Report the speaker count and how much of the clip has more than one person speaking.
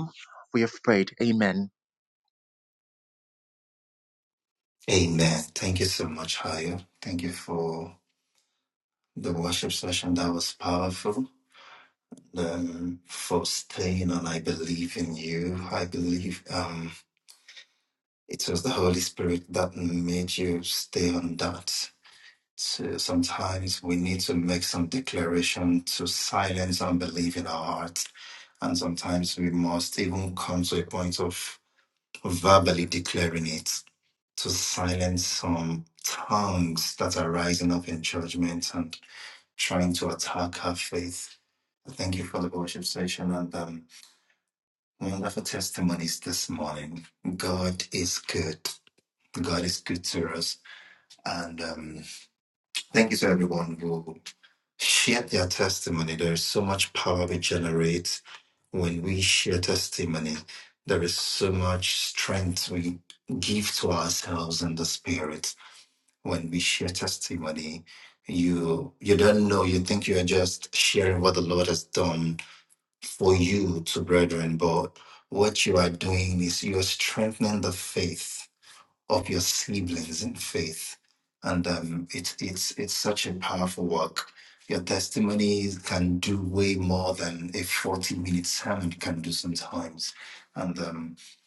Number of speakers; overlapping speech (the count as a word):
two, no overlap